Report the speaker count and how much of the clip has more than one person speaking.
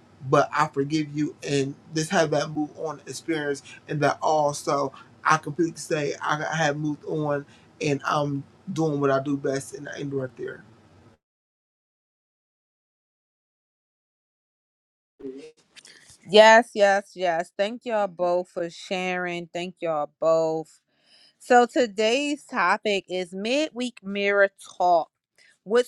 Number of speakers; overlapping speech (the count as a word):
two, no overlap